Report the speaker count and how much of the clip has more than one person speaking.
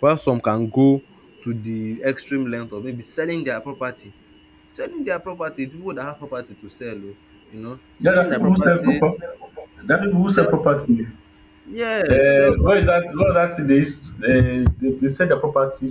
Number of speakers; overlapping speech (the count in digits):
2, about 11%